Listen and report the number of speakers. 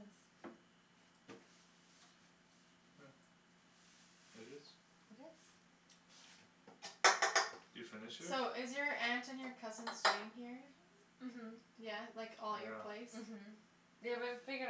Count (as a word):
three